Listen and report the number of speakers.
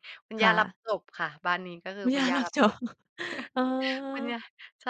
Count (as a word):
two